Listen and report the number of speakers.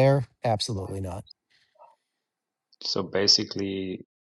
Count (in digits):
2